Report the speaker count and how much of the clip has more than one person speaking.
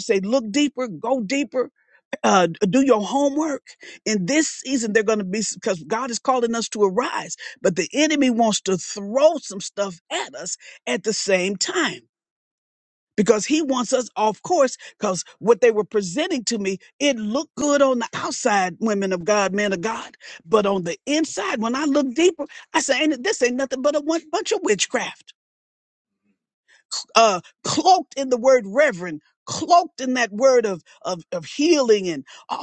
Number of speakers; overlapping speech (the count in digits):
1, no overlap